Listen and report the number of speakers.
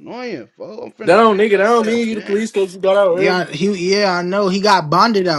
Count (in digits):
3